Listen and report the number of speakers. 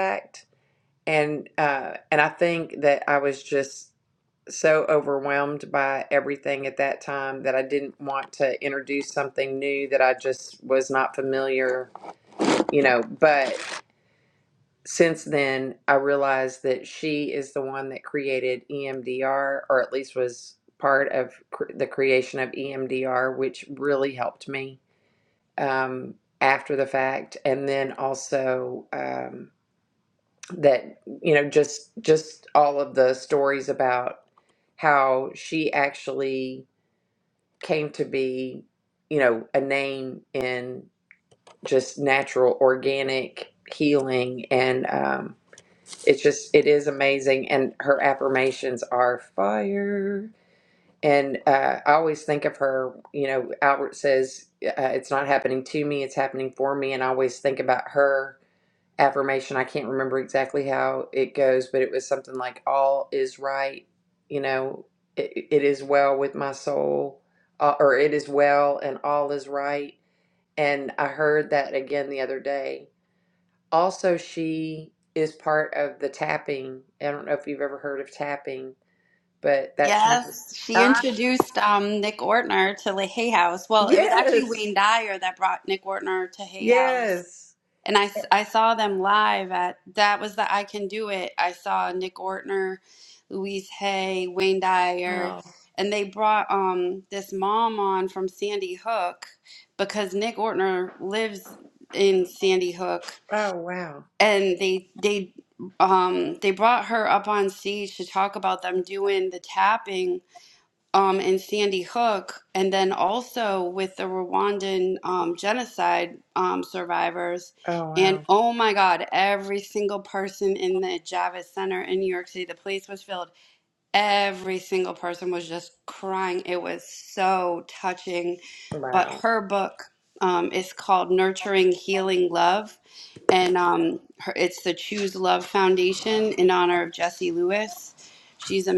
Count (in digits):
2